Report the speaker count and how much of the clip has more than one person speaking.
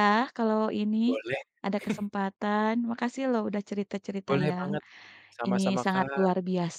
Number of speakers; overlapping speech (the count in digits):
2, about 20%